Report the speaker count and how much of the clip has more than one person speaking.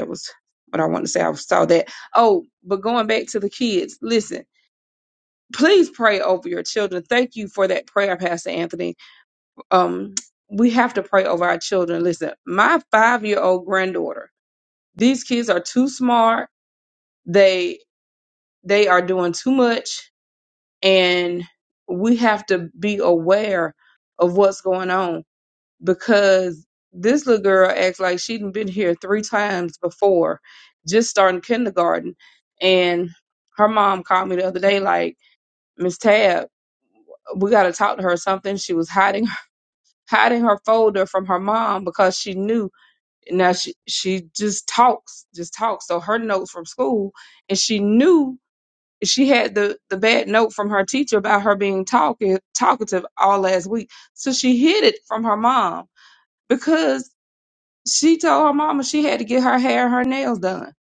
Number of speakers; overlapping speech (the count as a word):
one, no overlap